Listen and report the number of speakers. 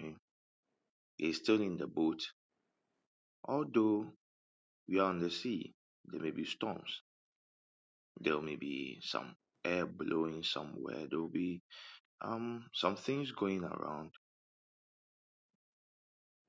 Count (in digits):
1